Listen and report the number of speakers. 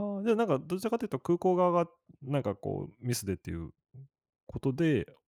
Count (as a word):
one